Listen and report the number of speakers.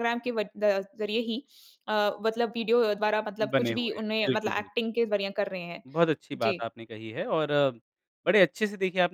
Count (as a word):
two